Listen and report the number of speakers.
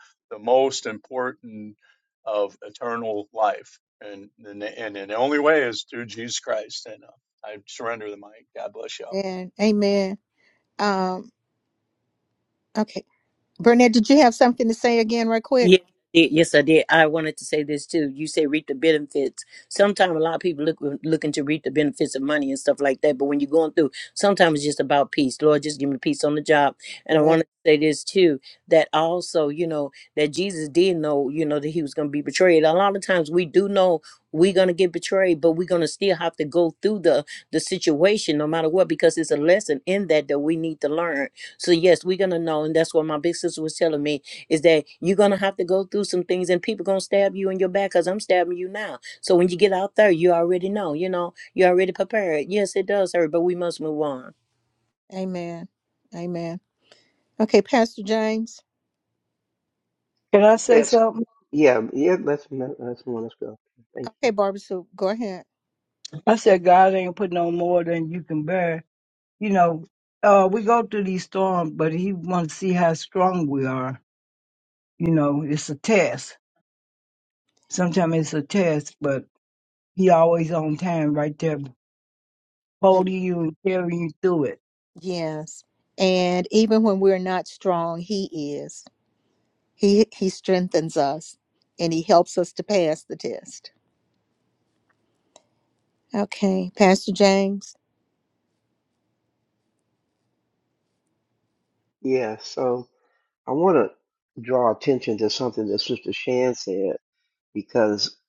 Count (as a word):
five